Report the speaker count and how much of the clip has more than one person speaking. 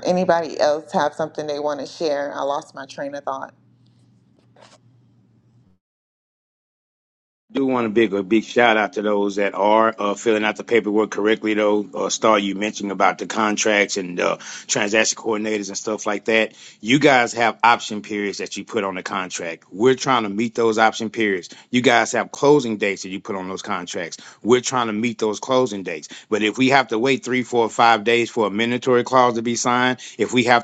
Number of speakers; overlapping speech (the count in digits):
2, no overlap